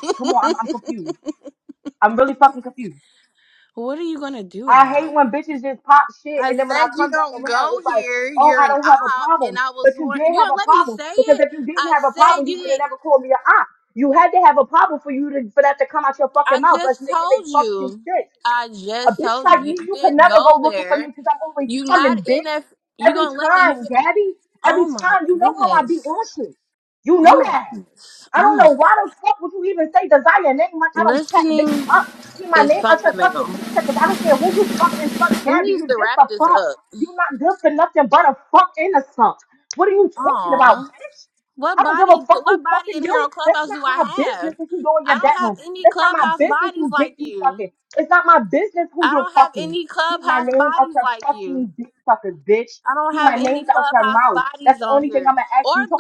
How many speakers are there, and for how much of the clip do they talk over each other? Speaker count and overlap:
two, about 49%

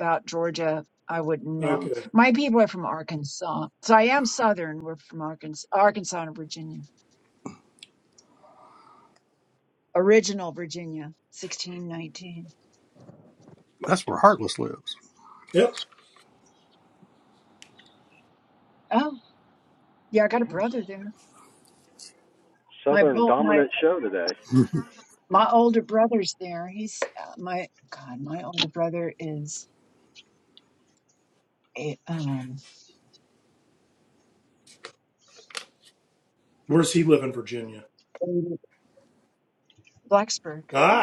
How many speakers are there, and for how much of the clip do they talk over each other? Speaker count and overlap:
four, about 3%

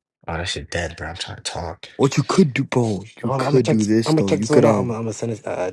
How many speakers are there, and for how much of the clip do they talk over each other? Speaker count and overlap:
three, about 29%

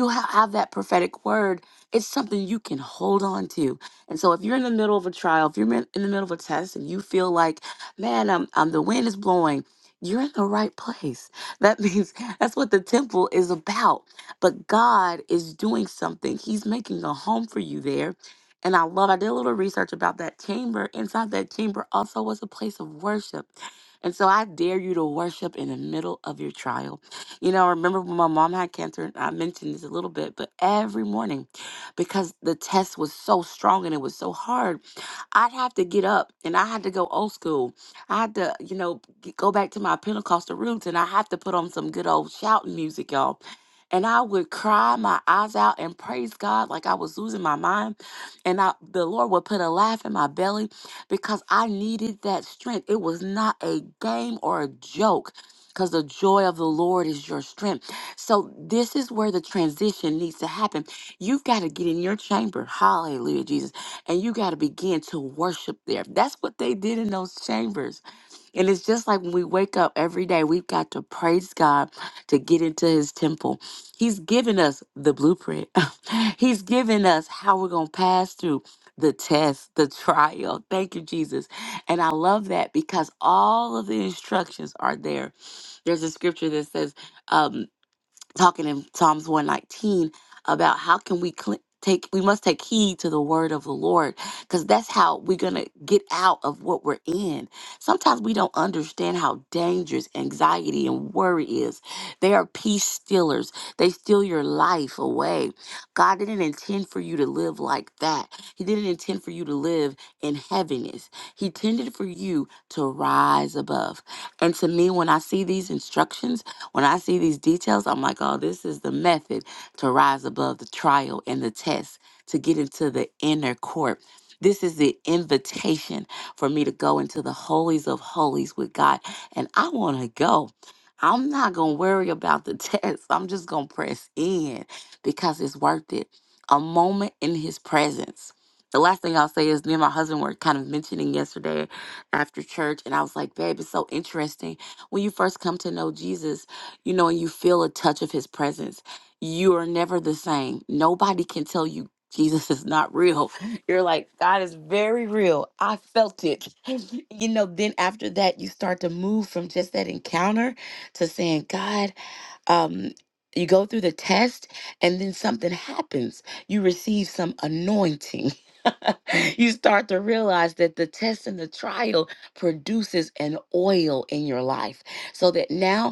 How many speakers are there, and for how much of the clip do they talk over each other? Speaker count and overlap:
one, no overlap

